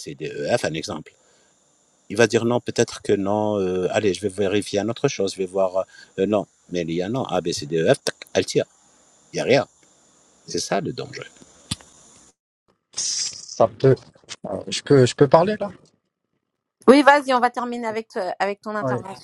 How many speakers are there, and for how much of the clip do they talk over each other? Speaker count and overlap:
three, no overlap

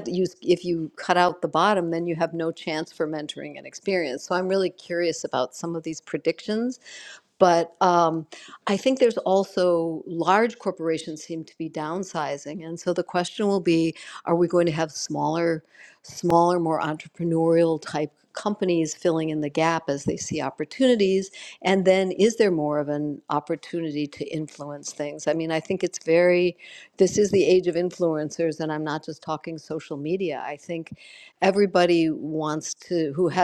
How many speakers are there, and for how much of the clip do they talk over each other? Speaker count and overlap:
one, no overlap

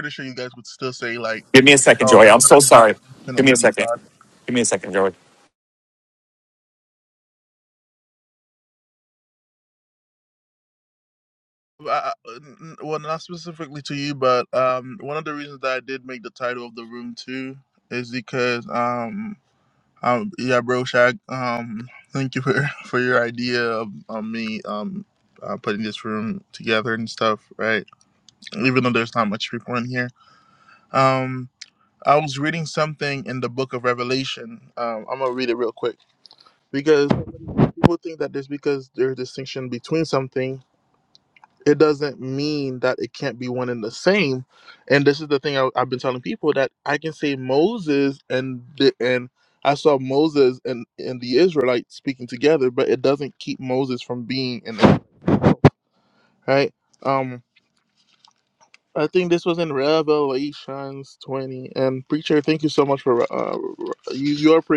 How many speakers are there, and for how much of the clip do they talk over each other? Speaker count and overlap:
two, about 2%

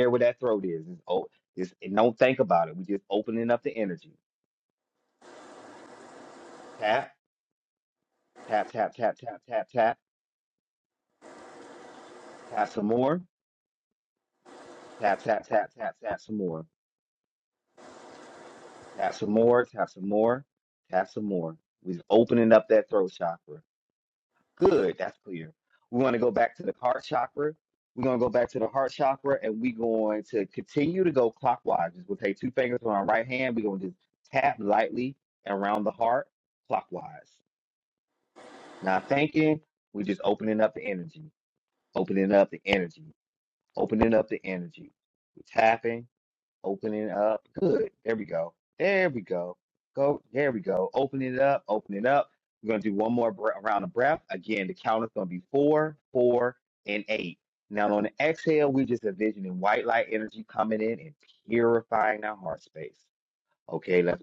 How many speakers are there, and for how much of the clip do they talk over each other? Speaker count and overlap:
one, no overlap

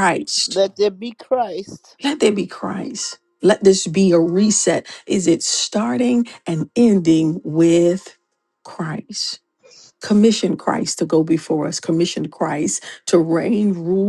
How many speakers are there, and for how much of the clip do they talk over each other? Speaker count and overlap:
two, about 1%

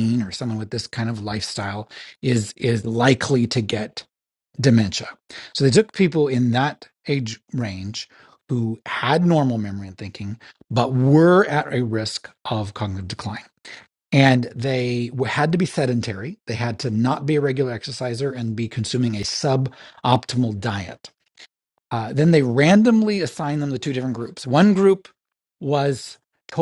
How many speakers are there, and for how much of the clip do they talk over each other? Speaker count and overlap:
one, no overlap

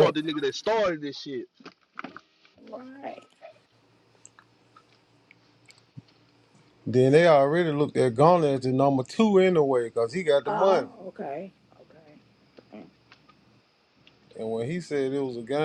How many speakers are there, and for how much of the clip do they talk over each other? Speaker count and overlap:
three, about 3%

